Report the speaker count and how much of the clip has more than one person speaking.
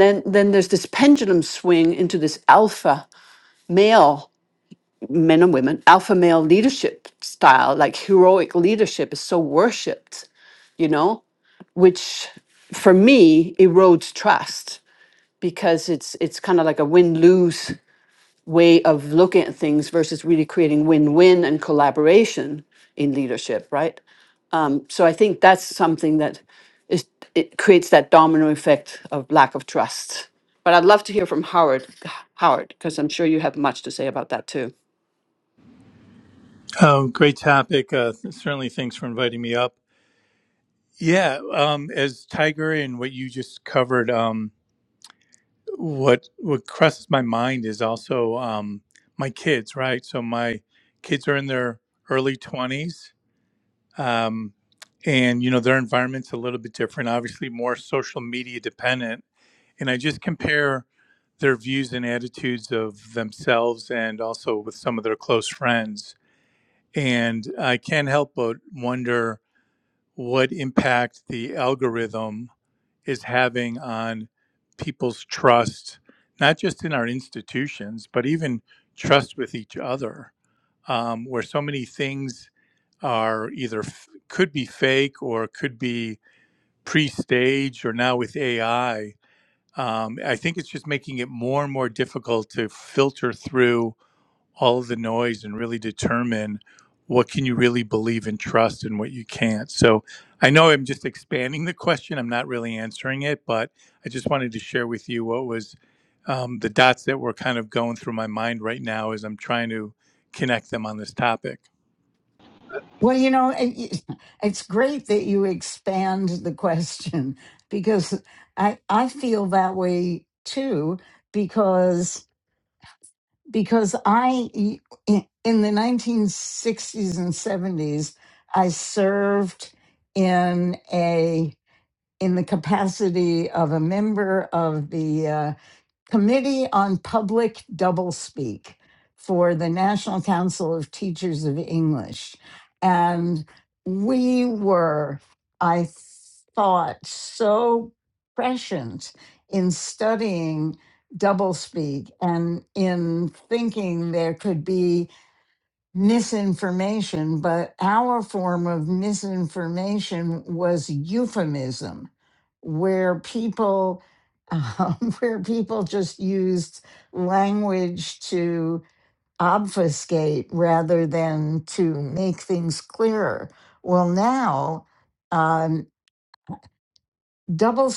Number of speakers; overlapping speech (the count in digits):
3, no overlap